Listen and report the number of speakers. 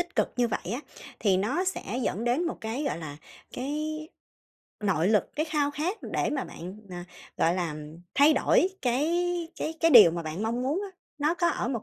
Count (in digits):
1